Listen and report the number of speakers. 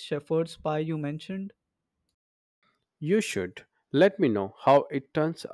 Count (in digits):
2